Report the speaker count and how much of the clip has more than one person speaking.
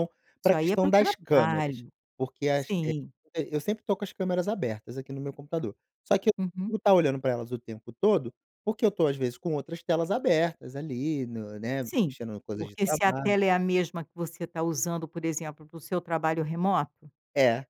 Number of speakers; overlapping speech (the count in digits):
2, about 14%